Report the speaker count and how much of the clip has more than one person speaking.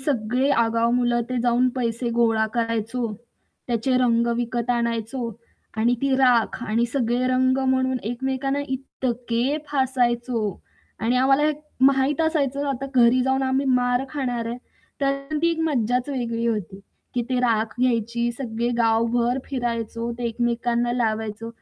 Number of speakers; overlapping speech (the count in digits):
1, no overlap